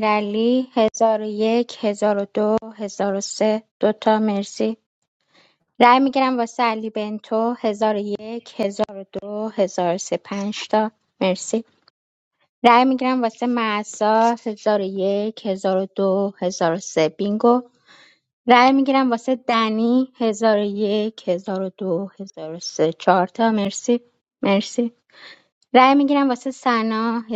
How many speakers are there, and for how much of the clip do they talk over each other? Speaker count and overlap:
1, no overlap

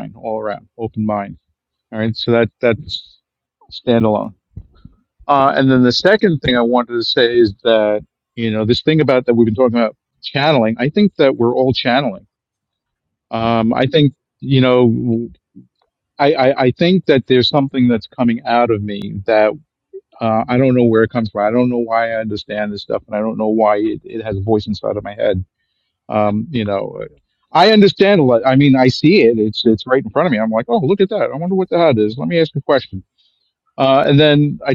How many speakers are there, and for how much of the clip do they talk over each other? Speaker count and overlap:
1, no overlap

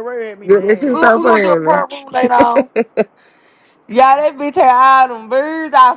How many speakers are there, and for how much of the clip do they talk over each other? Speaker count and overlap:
3, about 17%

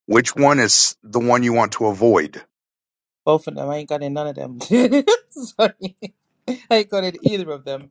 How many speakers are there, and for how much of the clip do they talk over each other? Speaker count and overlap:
2, no overlap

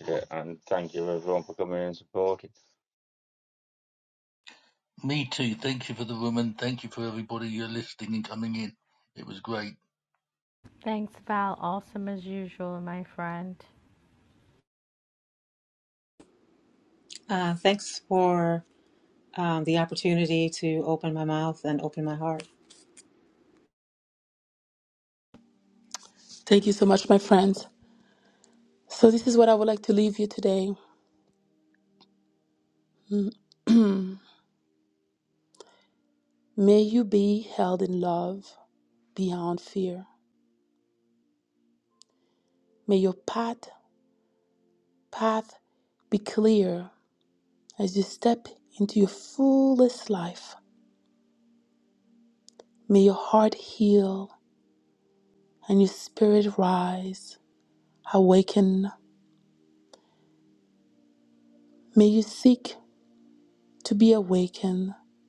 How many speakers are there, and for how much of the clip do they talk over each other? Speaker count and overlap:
5, no overlap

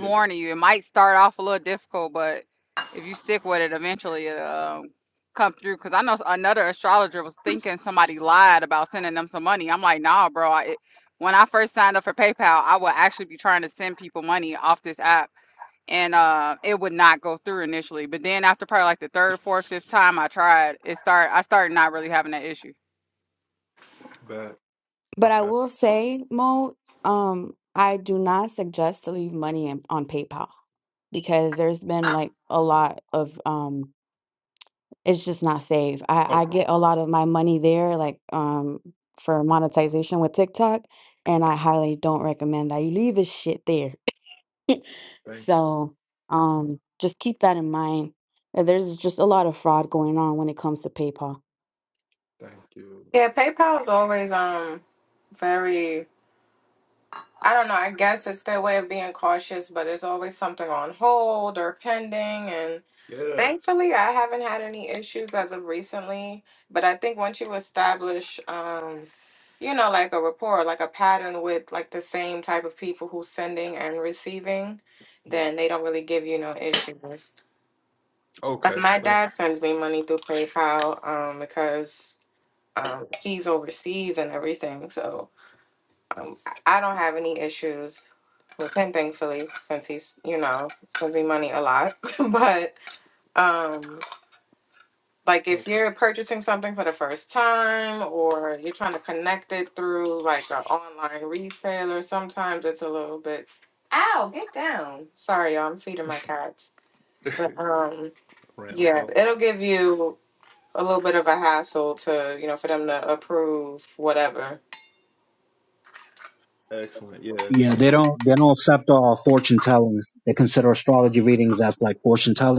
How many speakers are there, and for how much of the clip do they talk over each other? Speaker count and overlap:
5, about 3%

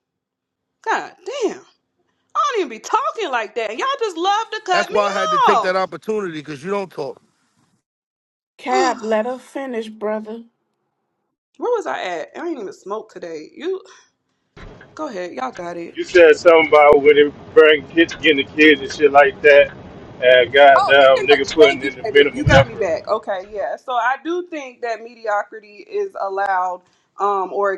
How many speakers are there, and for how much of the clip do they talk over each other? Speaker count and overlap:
4, about 11%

